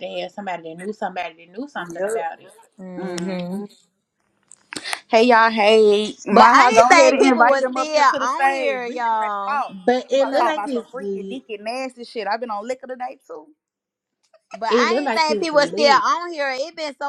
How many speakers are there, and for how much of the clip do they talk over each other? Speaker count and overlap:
3, about 39%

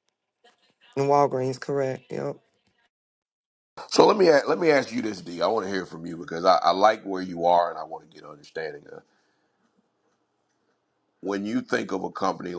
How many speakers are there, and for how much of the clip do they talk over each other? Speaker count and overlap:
2, no overlap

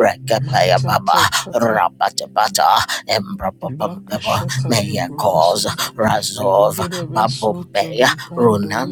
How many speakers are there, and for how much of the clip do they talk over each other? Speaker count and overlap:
2, about 59%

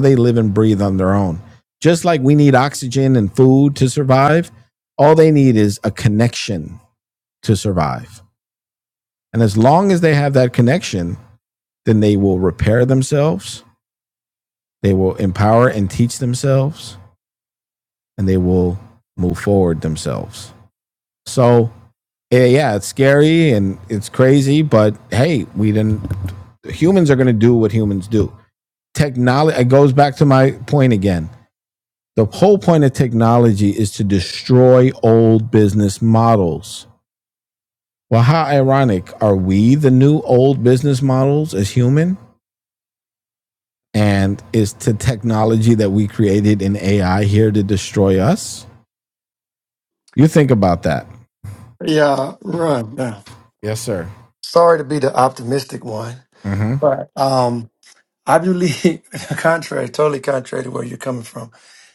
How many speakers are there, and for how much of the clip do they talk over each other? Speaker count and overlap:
2, no overlap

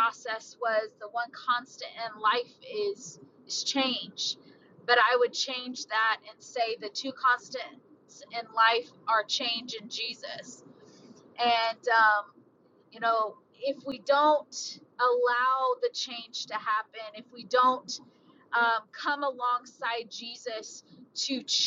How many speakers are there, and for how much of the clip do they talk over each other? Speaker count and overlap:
1, no overlap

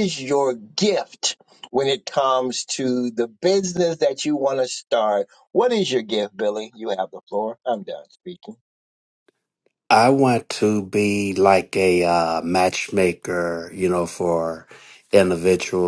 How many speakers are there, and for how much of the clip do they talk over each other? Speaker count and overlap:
2, no overlap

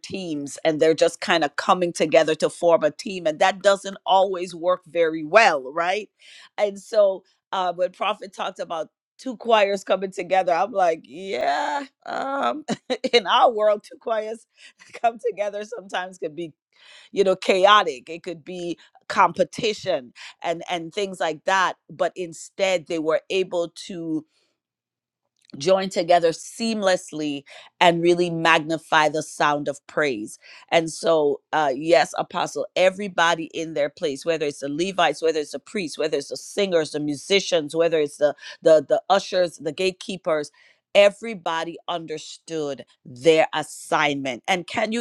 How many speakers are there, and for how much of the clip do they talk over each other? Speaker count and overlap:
1, no overlap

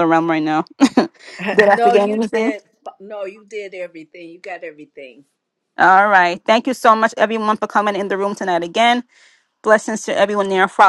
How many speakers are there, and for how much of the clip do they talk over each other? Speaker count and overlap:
2, about 8%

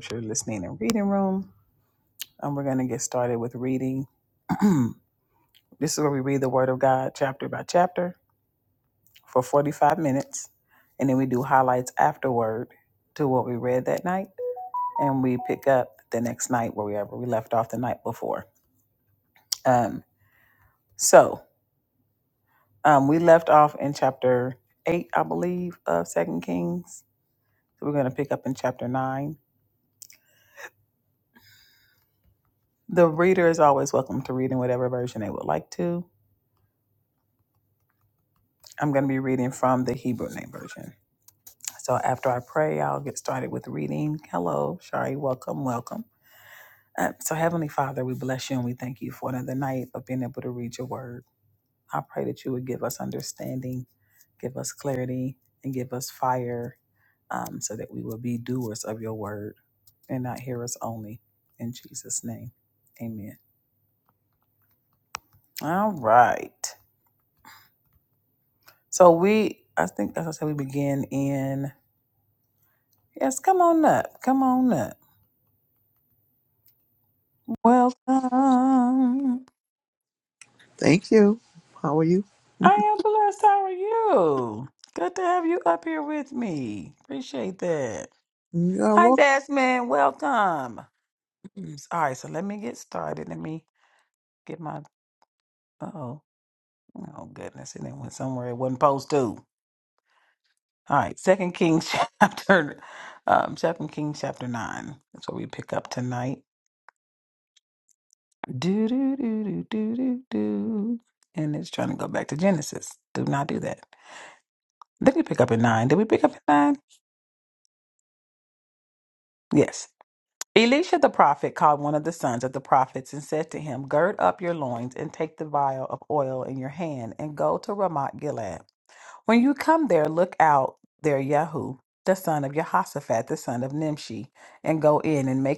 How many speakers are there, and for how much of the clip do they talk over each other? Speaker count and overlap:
2, under 1%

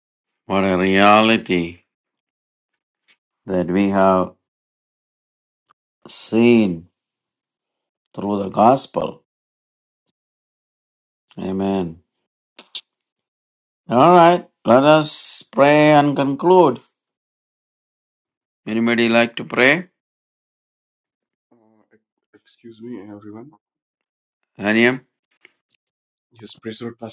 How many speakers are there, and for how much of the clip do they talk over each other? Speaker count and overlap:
2, no overlap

